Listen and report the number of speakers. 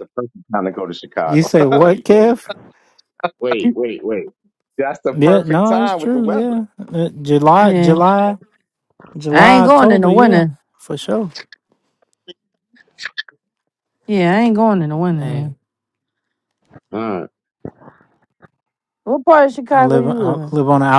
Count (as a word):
four